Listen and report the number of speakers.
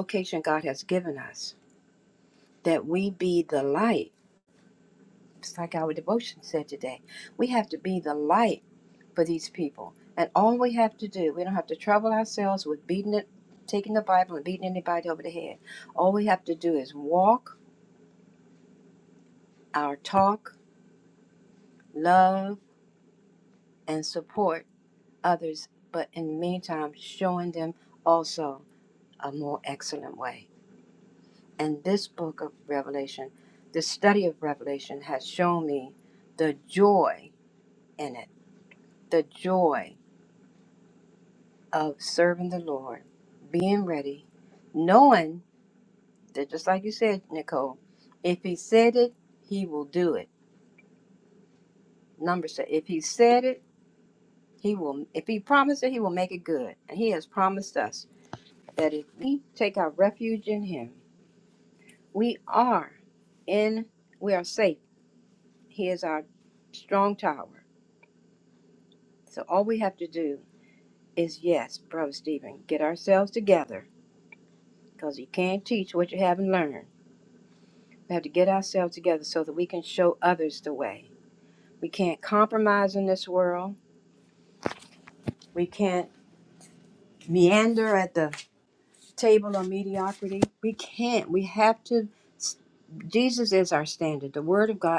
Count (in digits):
1